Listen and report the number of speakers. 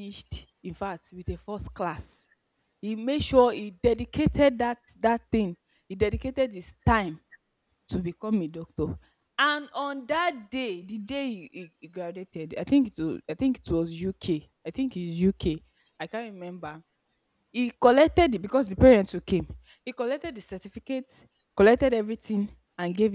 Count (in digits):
1